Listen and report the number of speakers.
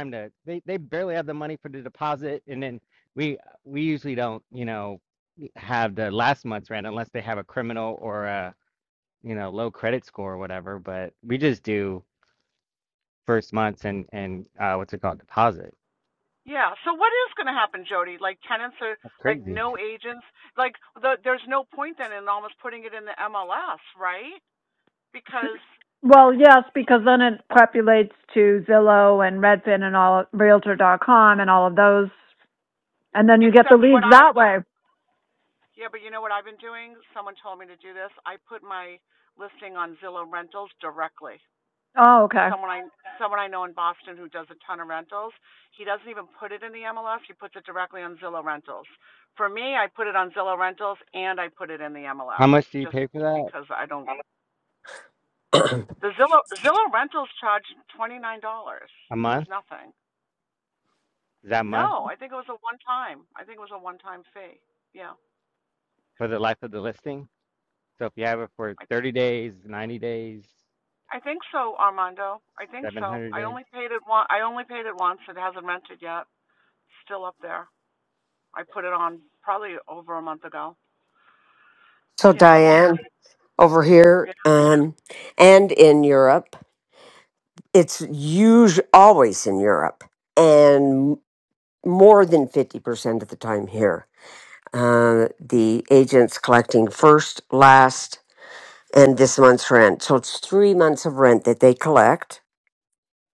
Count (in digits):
4